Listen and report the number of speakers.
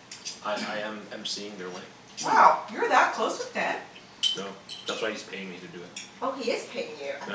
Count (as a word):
three